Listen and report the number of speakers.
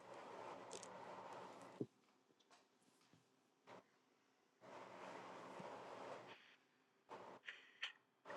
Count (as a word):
zero